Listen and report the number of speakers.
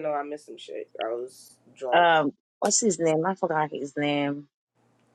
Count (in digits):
2